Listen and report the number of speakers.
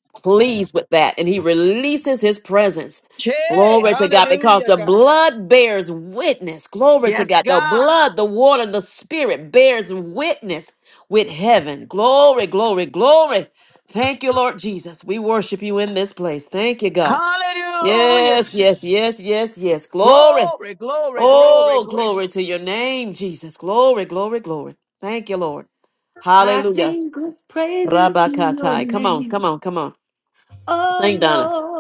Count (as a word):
three